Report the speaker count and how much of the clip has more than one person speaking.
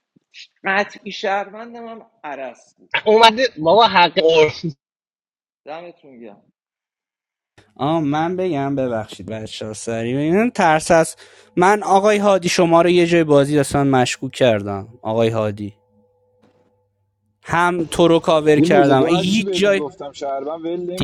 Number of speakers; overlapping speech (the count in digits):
4, about 6%